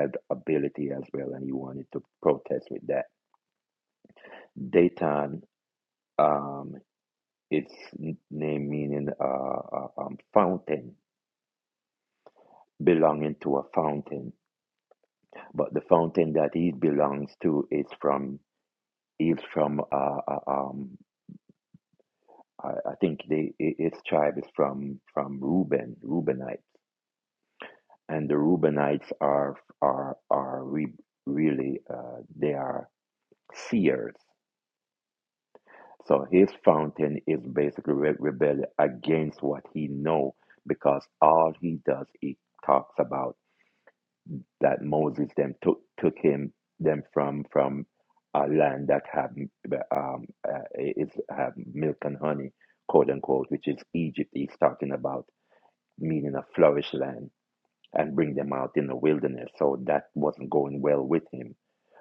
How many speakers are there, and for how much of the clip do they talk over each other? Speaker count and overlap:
1, no overlap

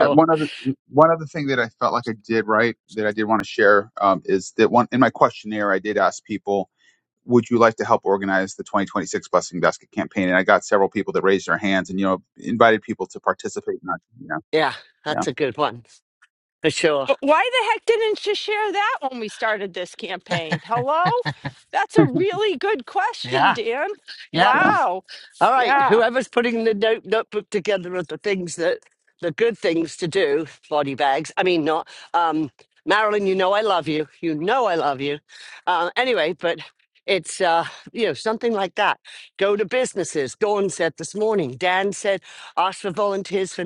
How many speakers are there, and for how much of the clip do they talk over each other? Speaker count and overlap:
3, about 3%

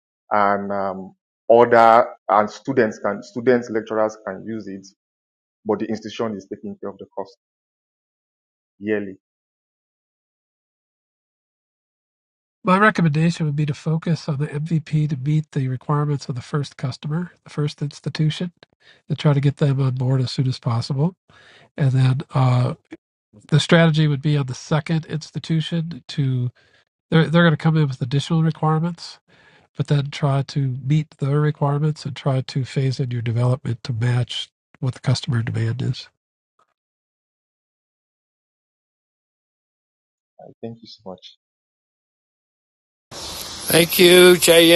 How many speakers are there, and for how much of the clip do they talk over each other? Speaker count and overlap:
3, no overlap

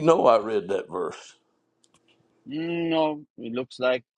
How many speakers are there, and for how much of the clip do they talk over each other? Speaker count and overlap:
2, no overlap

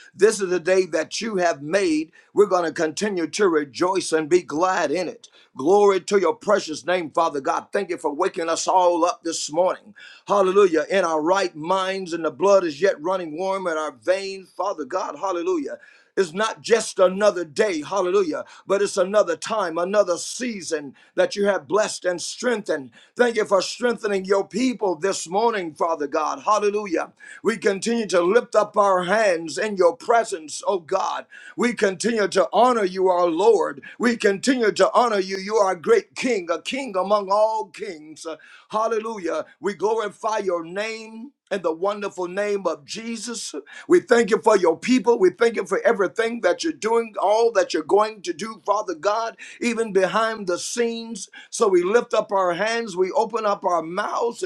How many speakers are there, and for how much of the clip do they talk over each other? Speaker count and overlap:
1, no overlap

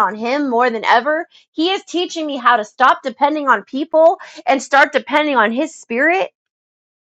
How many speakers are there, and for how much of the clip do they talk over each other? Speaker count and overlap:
1, no overlap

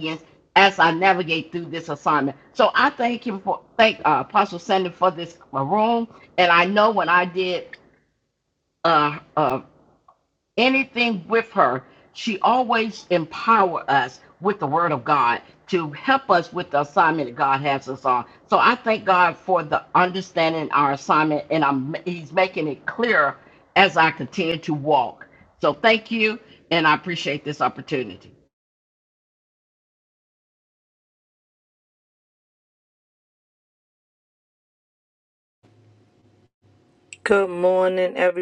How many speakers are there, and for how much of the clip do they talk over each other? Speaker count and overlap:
2, no overlap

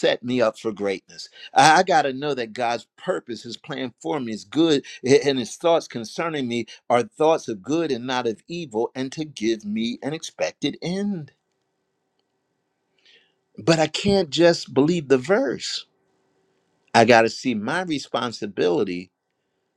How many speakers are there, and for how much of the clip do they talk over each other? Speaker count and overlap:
1, no overlap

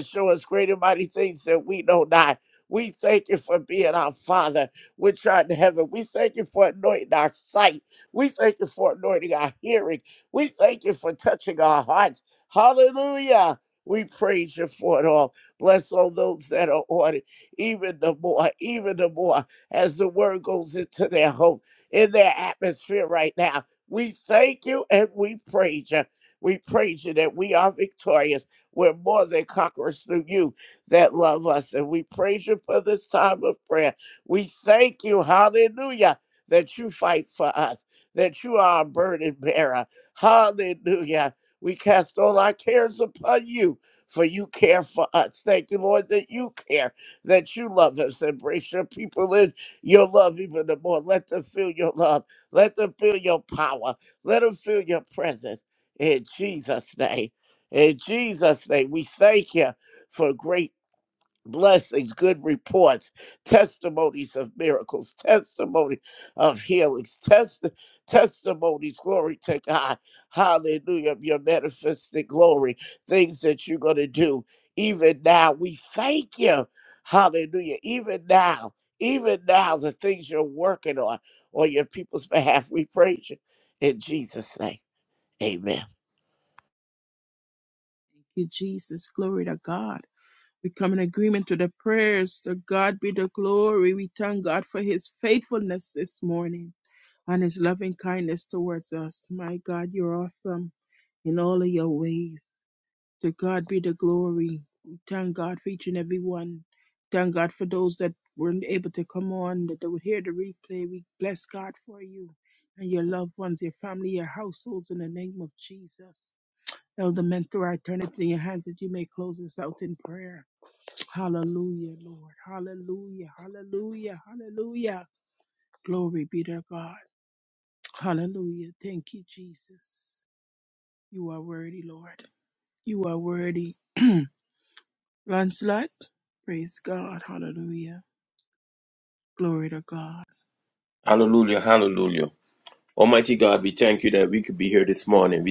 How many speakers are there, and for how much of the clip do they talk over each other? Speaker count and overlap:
3, no overlap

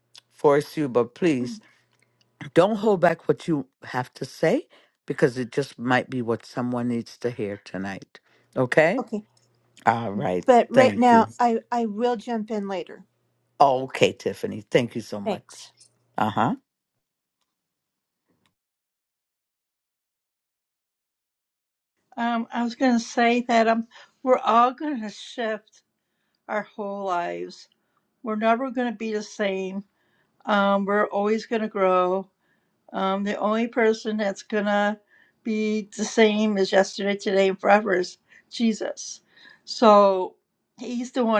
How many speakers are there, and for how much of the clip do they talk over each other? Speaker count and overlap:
3, about 2%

